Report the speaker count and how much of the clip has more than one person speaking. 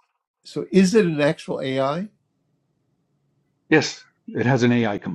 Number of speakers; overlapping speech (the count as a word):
two, no overlap